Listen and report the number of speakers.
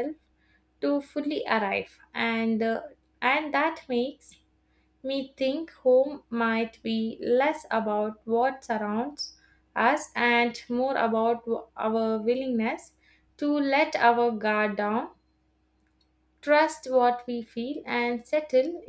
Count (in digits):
1